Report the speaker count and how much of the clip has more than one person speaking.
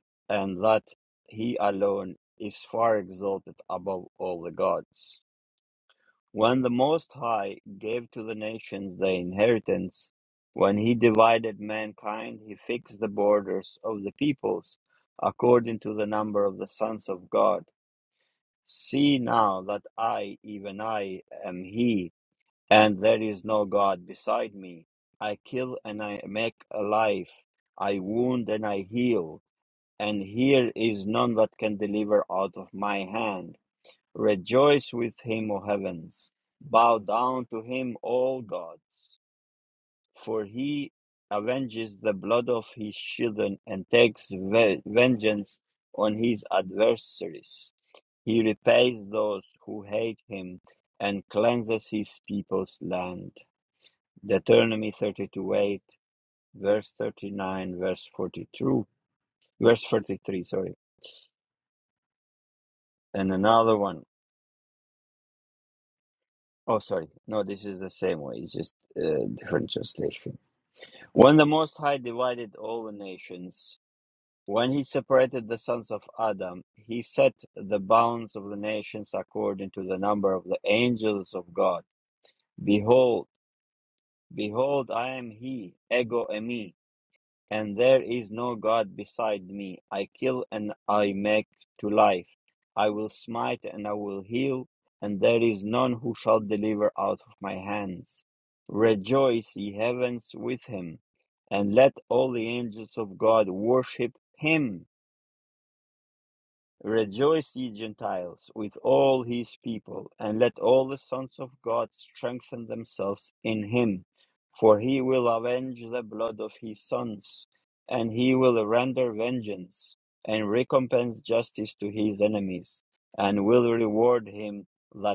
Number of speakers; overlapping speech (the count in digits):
1, no overlap